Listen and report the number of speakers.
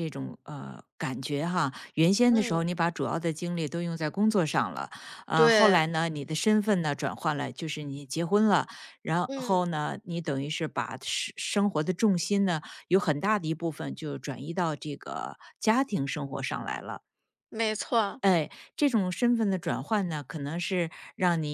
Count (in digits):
2